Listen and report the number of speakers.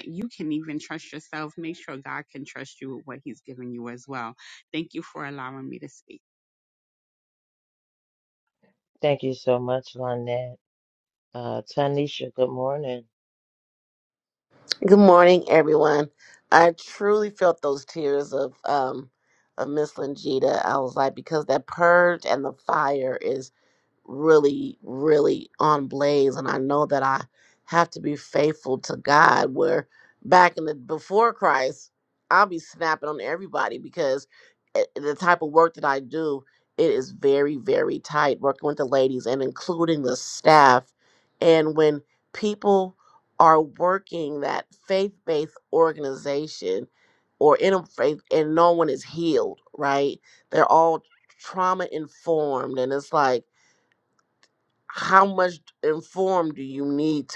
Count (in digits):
3